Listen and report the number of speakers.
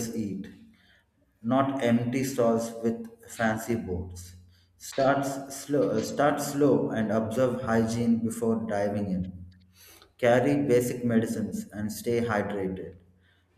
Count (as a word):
one